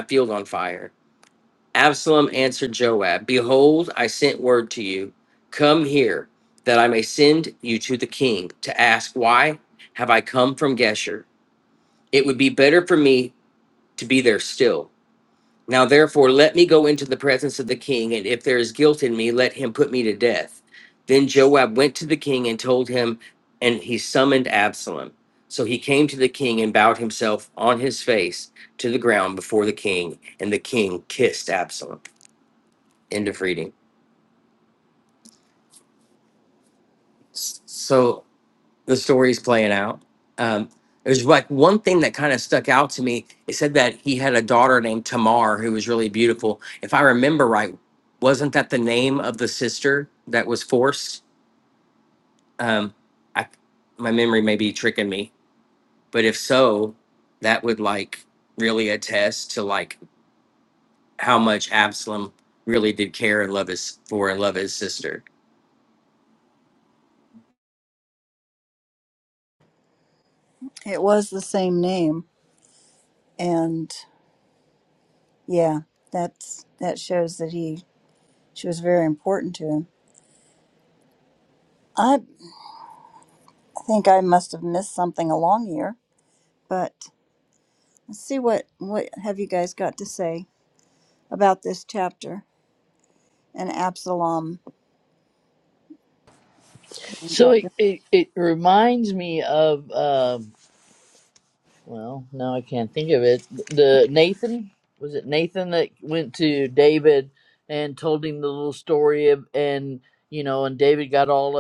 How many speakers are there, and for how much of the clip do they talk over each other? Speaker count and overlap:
3, under 1%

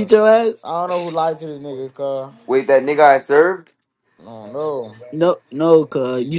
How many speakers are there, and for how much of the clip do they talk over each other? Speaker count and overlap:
3, about 2%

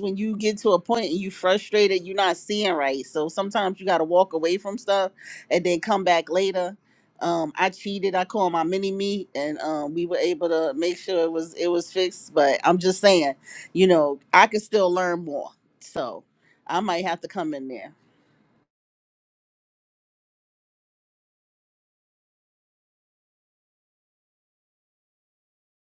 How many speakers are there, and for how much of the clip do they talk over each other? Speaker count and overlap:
1, no overlap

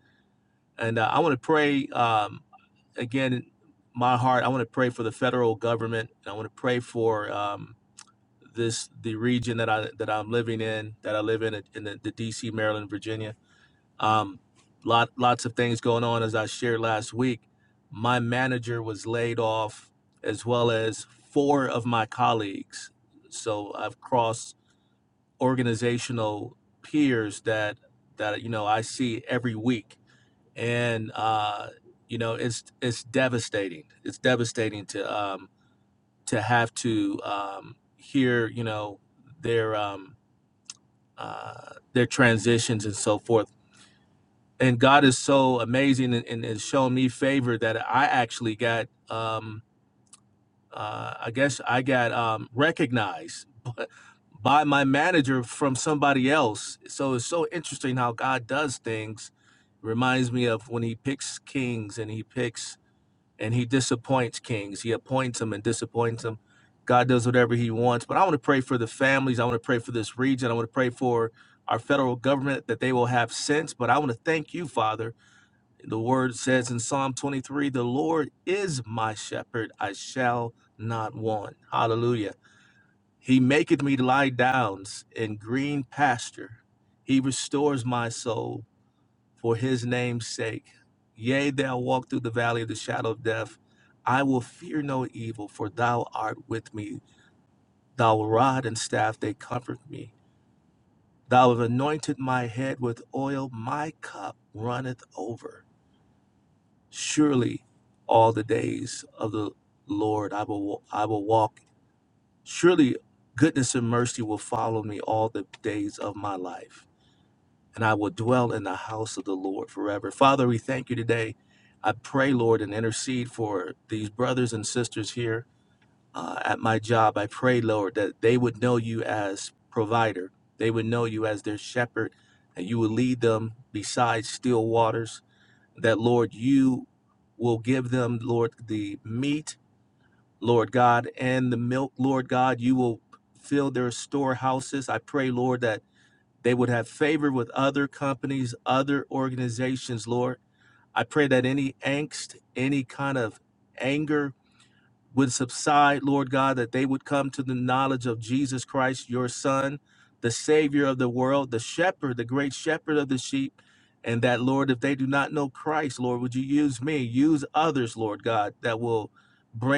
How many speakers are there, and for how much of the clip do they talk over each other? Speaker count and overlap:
1, no overlap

